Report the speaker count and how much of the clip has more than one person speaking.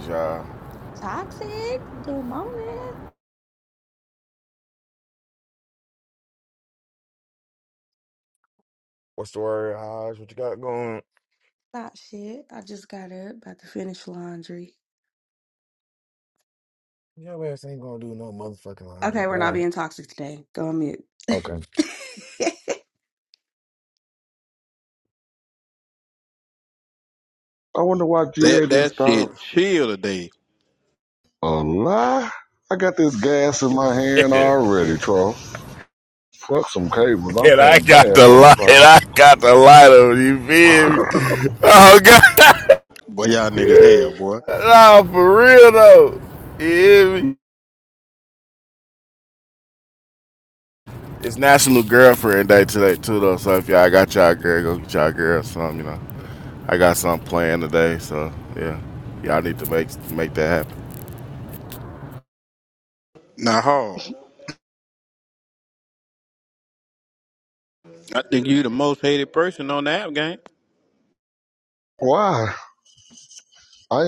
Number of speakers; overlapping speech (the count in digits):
5, about 5%